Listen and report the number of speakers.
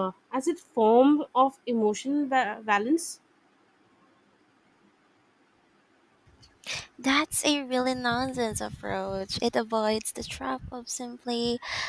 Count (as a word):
two